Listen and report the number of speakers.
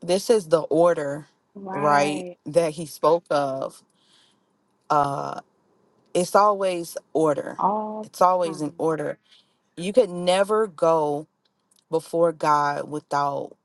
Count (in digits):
2